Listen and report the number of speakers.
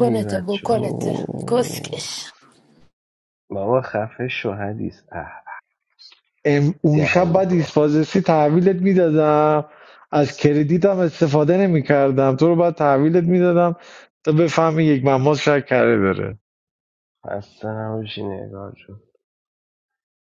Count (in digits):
3